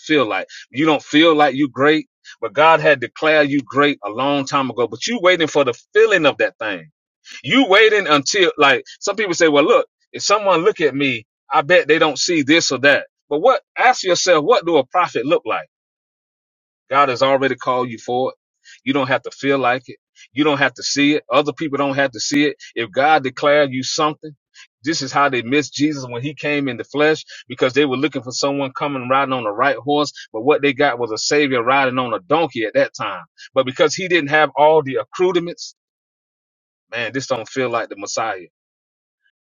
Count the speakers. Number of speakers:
1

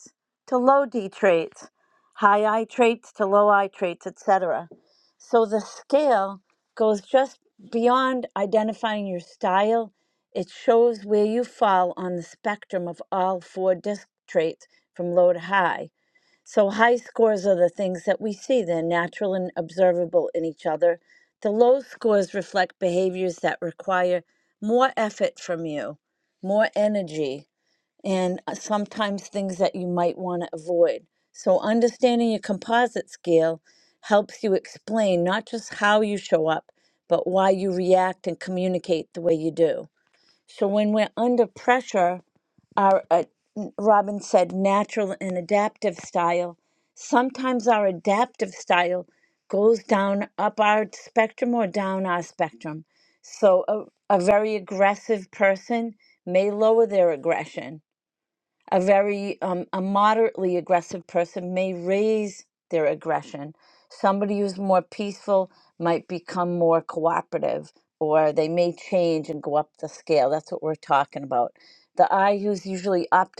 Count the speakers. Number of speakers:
1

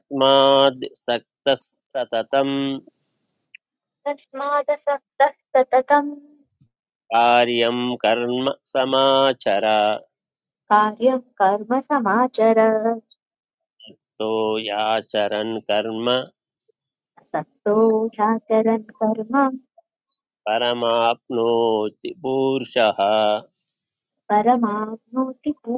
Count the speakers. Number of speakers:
2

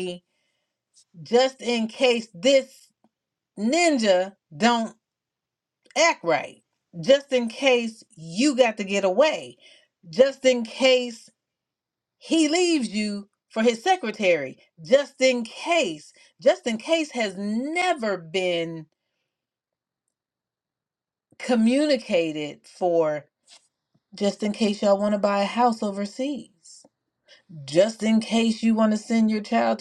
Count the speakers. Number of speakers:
1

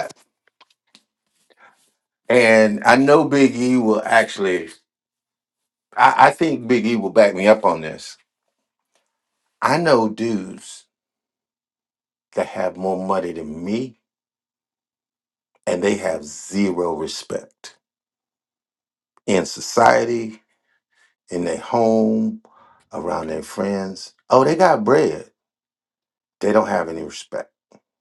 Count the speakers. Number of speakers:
1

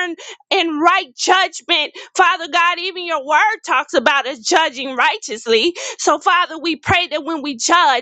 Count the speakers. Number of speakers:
1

